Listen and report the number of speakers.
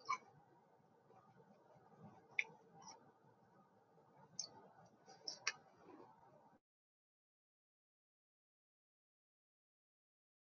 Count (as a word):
zero